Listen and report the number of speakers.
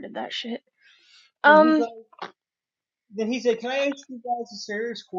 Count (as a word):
two